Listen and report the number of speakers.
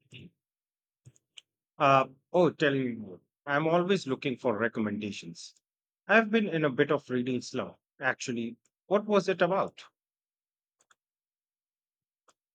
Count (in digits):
1